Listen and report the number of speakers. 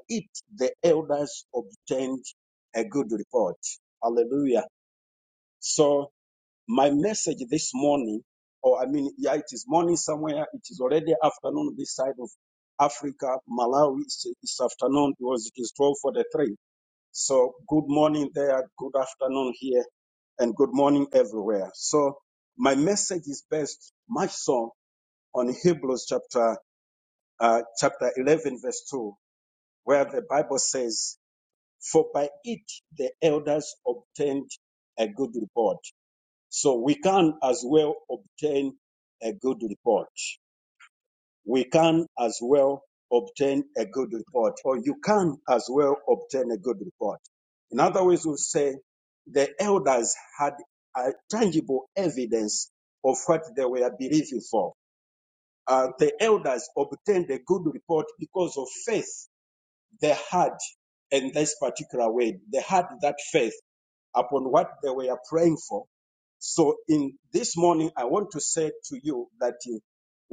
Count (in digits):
1